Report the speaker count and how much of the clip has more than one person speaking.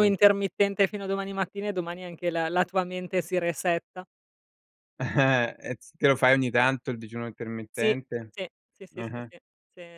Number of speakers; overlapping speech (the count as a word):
two, about 6%